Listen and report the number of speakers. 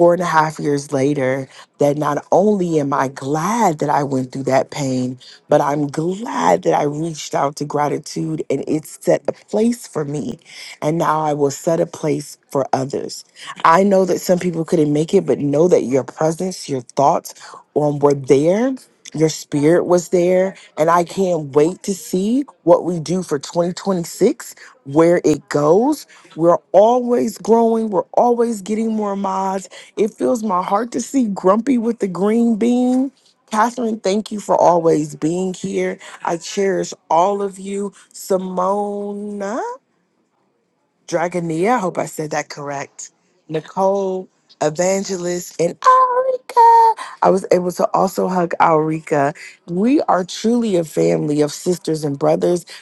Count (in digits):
1